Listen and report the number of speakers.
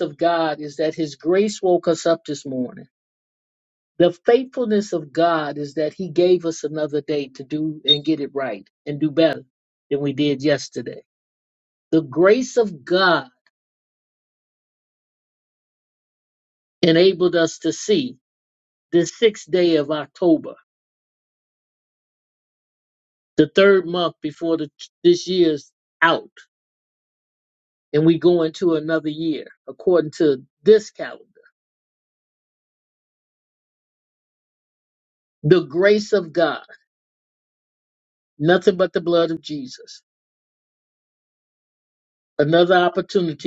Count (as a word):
one